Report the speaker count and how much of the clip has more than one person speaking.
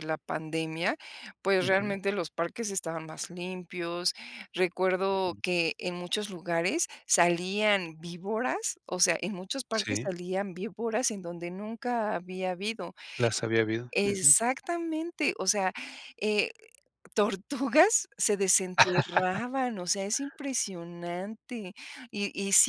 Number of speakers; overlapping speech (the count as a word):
two, about 4%